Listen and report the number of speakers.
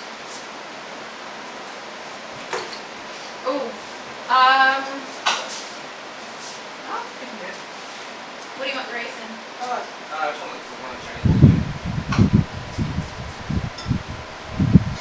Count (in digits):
2